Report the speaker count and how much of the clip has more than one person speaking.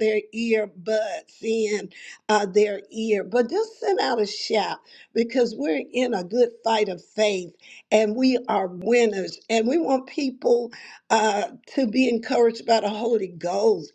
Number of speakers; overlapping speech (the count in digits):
1, no overlap